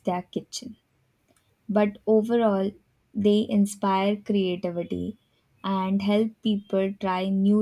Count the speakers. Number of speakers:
1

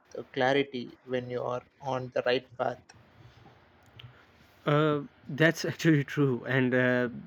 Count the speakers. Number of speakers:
2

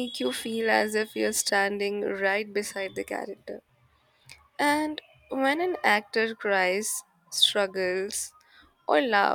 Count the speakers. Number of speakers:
1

